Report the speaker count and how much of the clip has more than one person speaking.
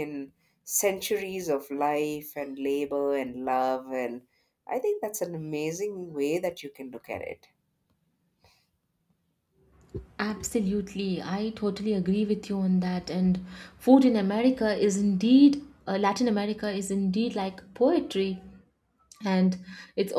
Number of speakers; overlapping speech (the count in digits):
2, no overlap